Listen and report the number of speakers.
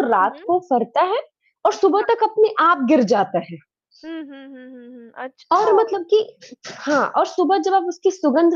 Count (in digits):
2